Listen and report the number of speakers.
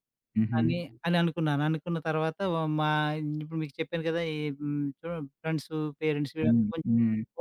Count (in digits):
2